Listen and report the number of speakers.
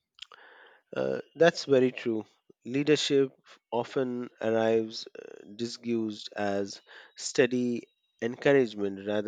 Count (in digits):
1